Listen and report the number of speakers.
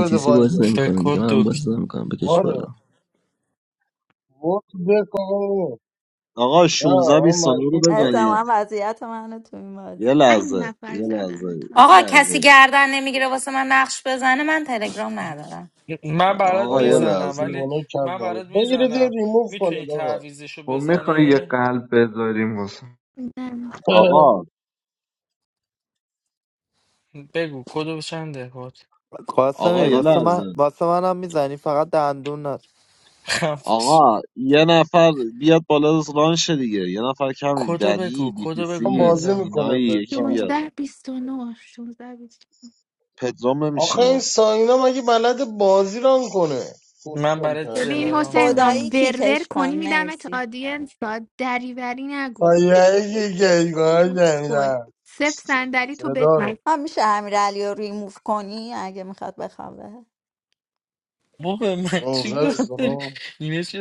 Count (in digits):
9